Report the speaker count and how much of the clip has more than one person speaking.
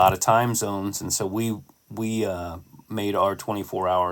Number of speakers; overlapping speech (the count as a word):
one, no overlap